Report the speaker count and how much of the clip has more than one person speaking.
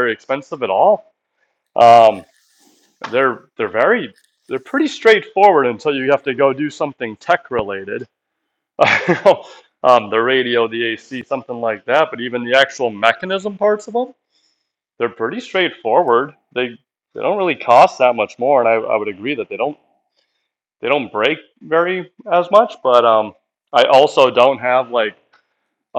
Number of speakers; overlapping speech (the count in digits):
1, no overlap